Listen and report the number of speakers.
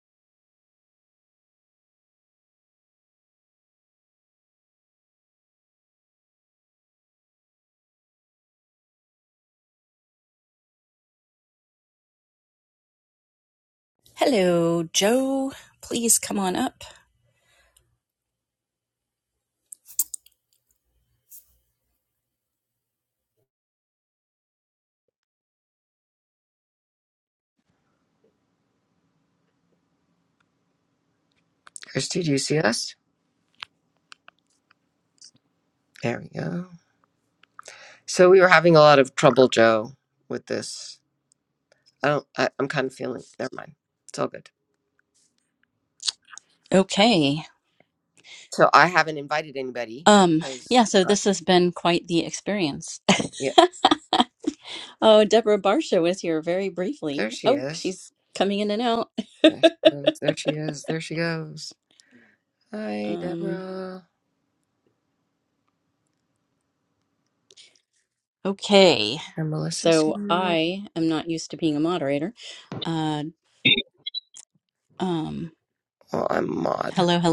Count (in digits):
2